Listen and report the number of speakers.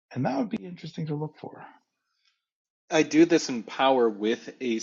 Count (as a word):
two